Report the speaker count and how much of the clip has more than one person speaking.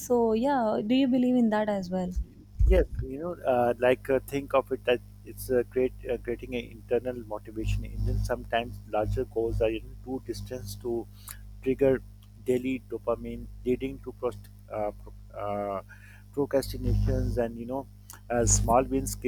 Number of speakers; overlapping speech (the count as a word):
two, no overlap